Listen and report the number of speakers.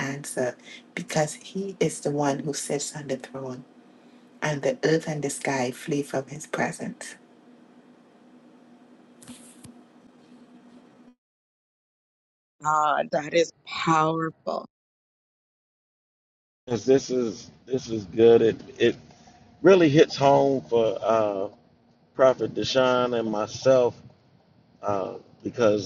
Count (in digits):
3